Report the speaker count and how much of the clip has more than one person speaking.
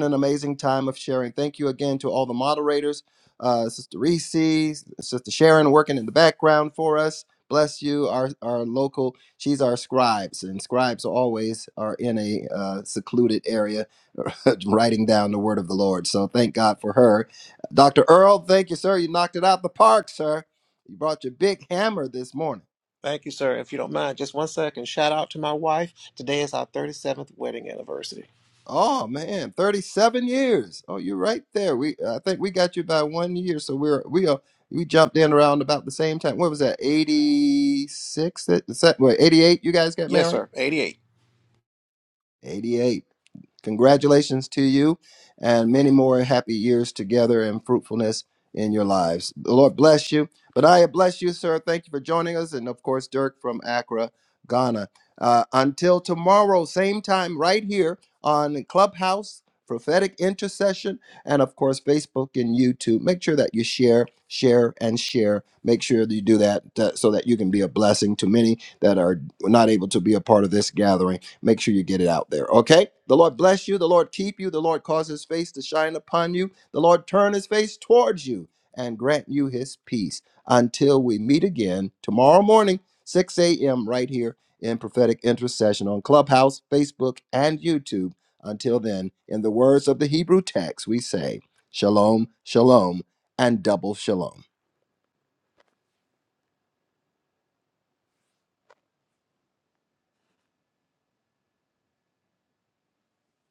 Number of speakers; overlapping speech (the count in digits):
2, under 1%